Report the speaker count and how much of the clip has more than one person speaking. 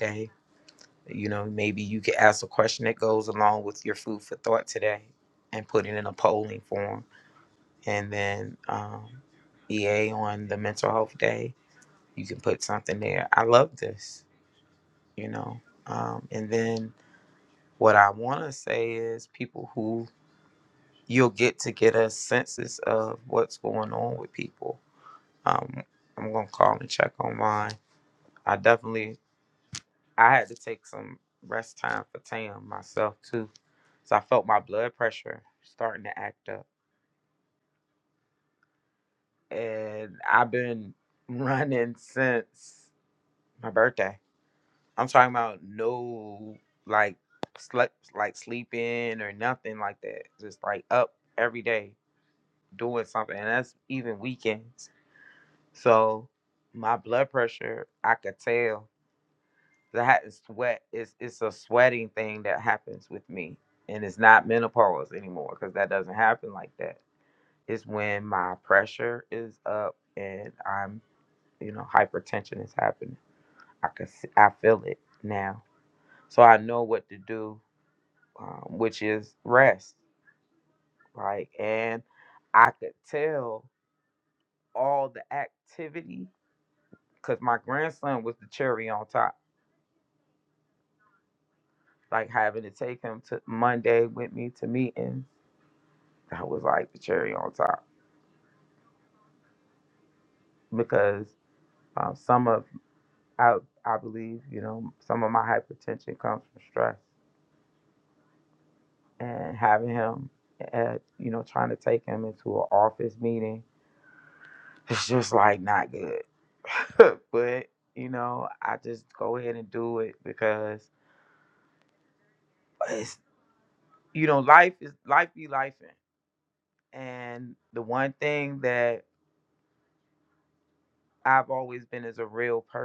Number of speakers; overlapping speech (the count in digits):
1, no overlap